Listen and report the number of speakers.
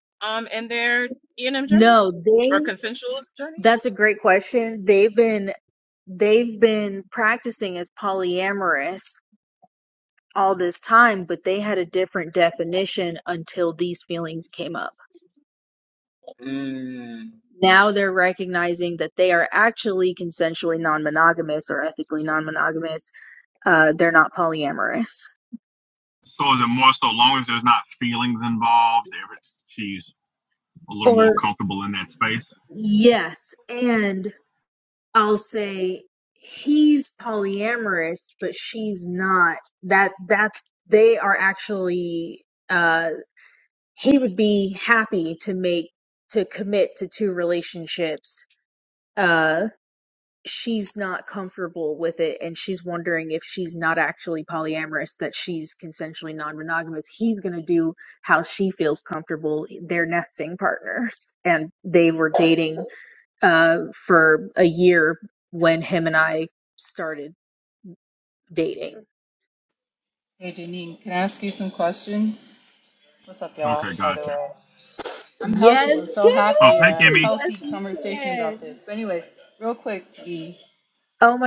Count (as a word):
four